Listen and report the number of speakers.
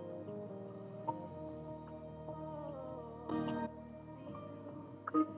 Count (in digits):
0